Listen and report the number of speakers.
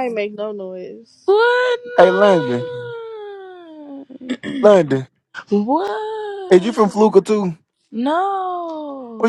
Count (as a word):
three